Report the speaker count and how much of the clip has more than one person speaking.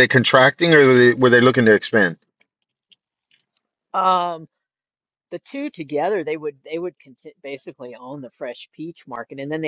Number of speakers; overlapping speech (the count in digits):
2, no overlap